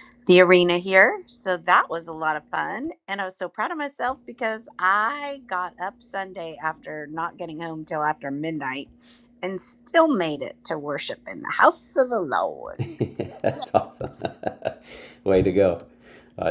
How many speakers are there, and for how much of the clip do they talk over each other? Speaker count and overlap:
two, about 1%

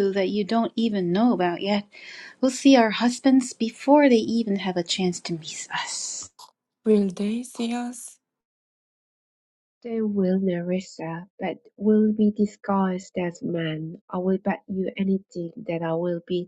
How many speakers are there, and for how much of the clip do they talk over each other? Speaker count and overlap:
three, no overlap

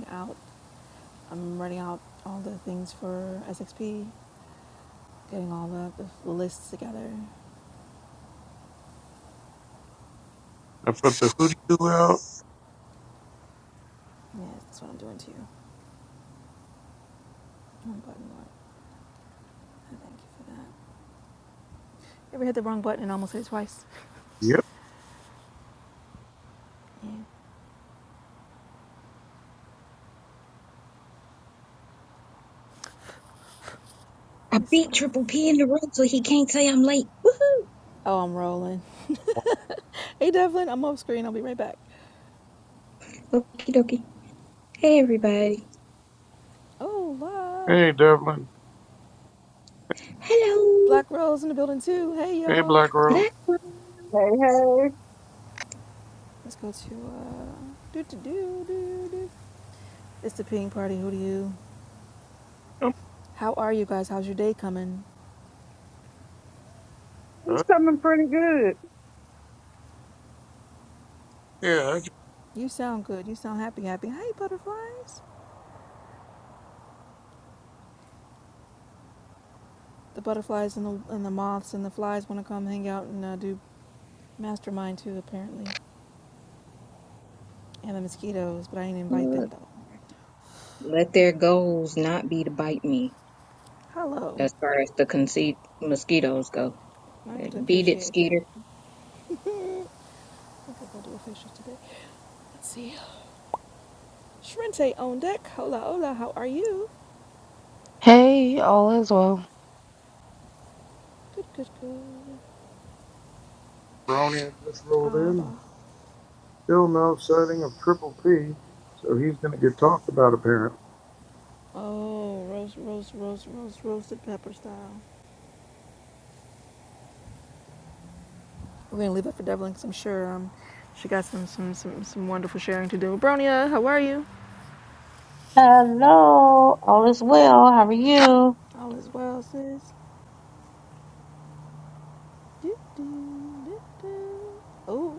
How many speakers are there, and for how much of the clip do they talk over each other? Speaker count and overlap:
six, about 2%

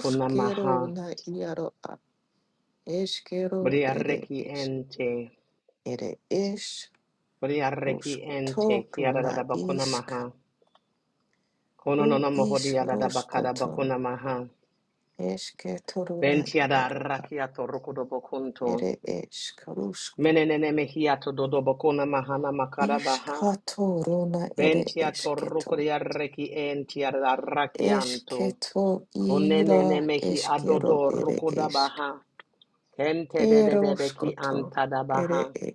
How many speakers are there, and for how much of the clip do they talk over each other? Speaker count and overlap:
two, about 38%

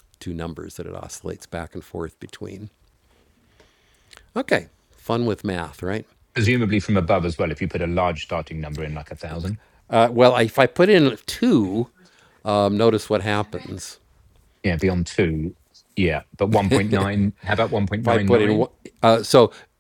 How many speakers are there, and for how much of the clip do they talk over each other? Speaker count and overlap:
two, about 3%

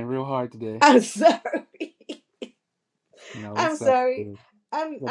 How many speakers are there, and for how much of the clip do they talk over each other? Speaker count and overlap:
two, about 16%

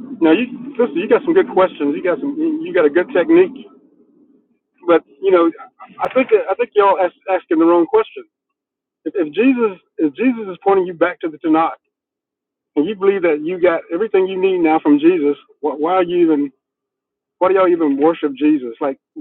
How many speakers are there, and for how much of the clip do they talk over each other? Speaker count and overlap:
one, no overlap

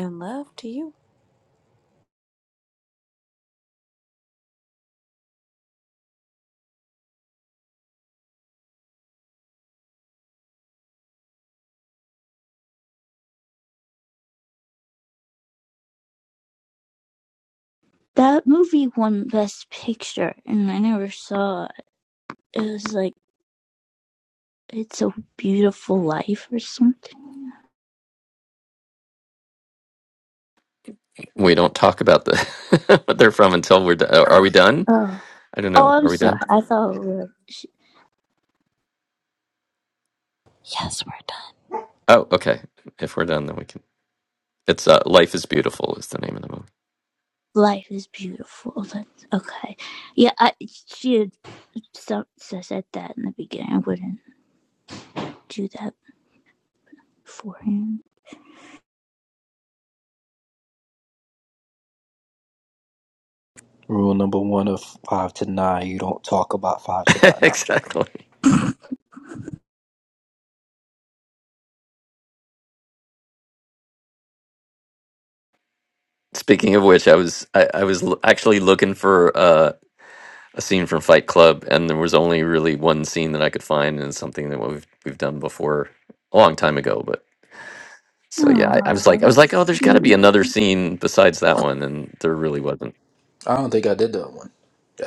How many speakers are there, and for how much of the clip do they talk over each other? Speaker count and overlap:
four, about 3%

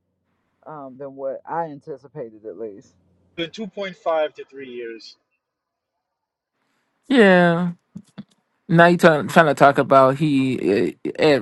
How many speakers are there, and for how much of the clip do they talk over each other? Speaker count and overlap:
three, no overlap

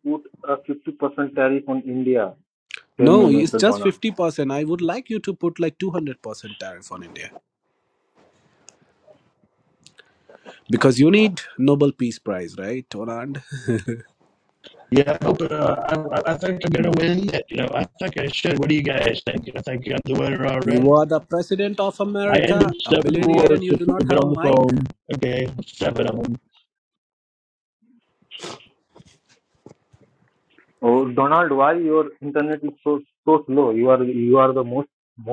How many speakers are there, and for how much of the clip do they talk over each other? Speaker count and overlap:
three, about 10%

